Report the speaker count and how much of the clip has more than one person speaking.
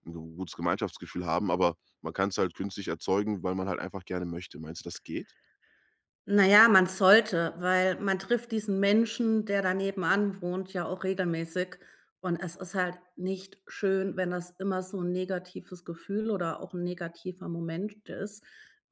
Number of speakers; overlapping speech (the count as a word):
two, no overlap